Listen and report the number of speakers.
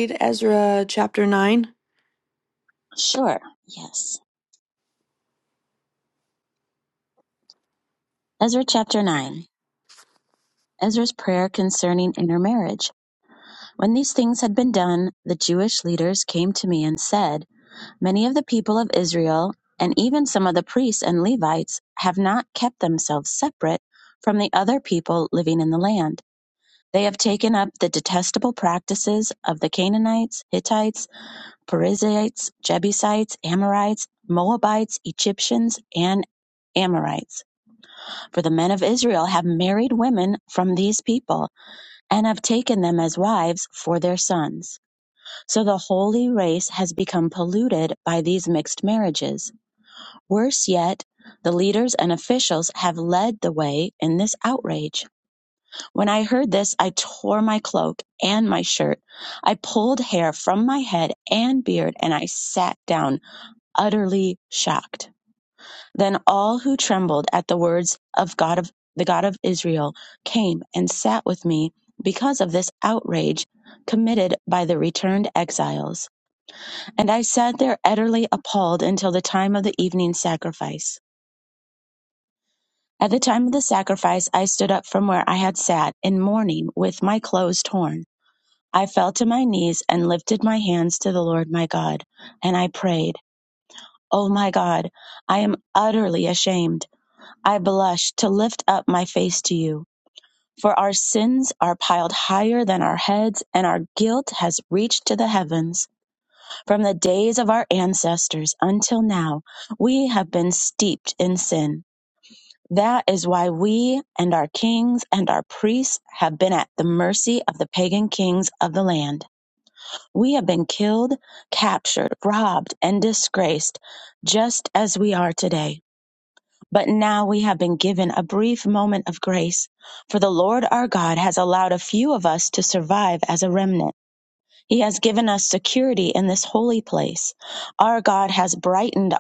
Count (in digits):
2